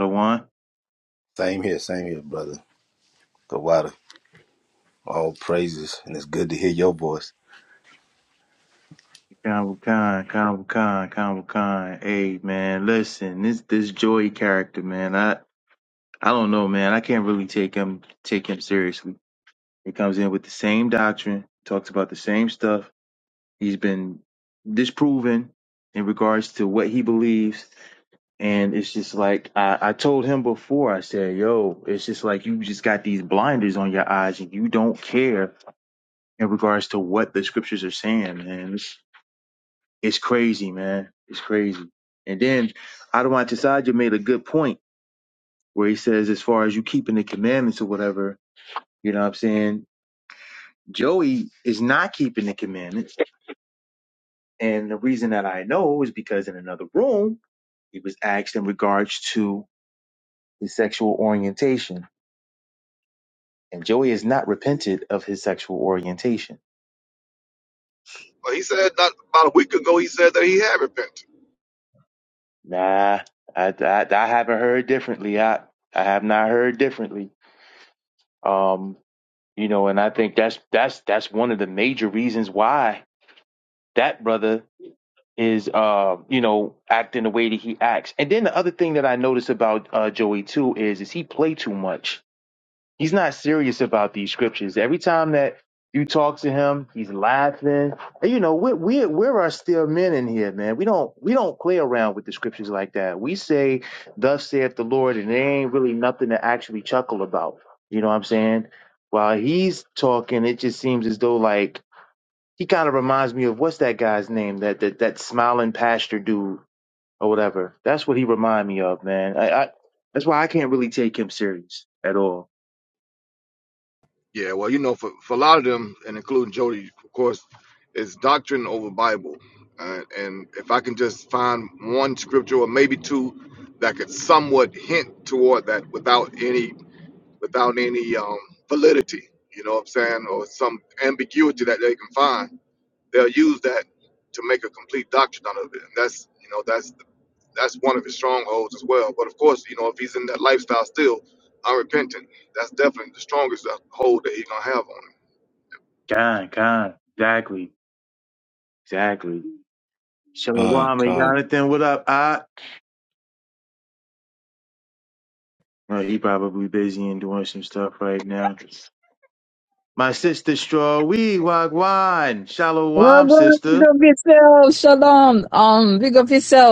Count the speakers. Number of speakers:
4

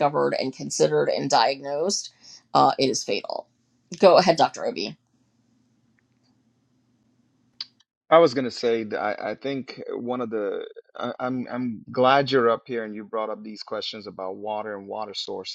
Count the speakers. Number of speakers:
2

